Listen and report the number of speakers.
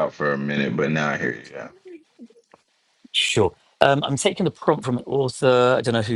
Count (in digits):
2